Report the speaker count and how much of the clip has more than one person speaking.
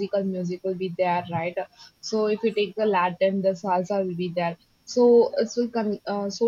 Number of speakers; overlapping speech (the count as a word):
one, no overlap